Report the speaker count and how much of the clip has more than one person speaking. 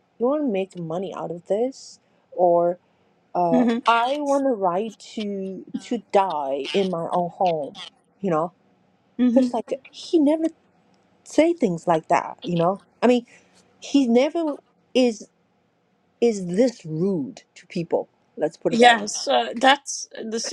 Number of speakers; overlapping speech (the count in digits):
2, about 4%